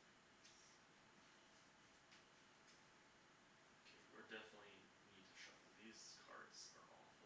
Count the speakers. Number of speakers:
1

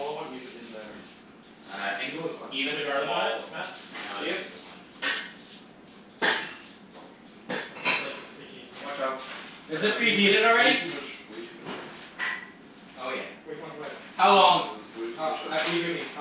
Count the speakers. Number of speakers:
4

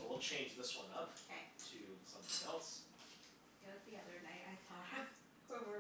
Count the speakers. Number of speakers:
2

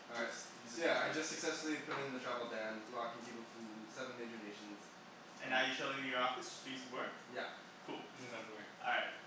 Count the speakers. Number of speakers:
3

